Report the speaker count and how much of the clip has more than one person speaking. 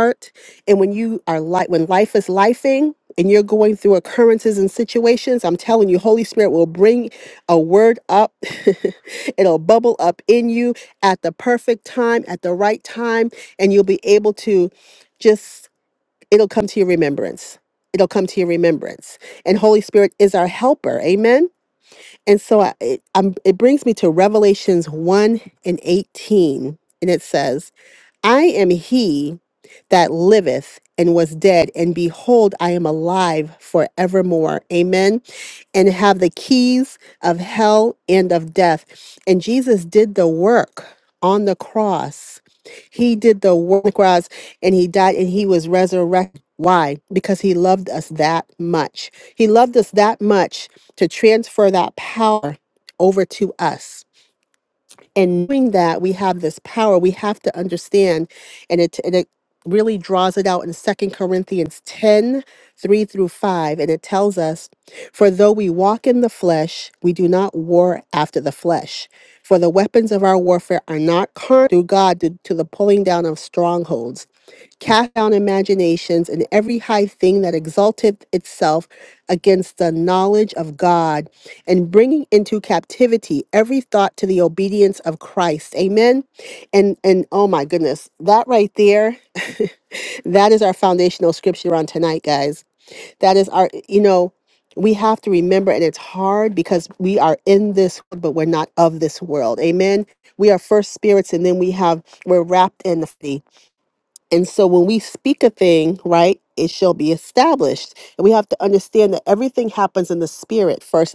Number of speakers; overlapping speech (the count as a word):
one, no overlap